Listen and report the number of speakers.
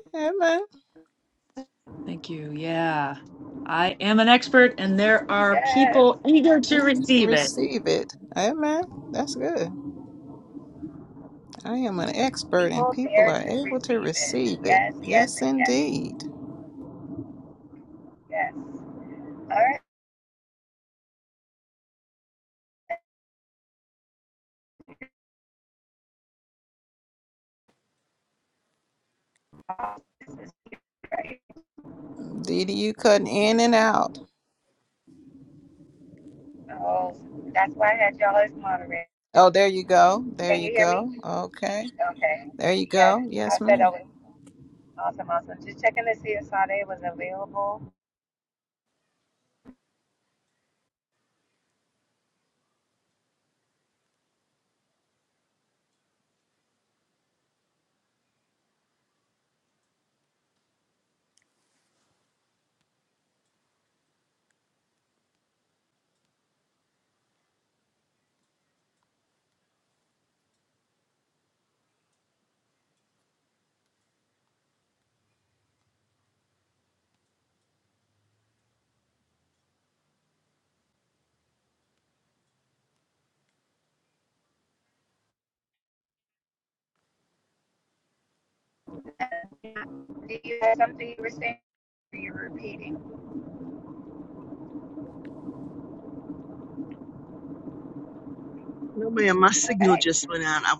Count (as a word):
four